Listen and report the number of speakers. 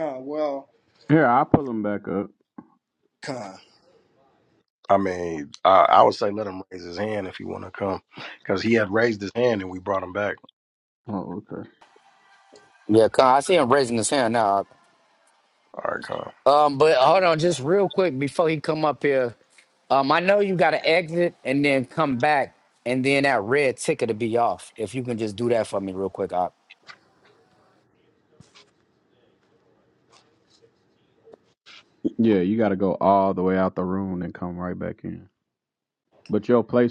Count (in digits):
4